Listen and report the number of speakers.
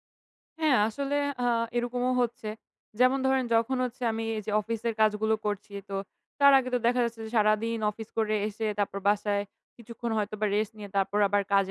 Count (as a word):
one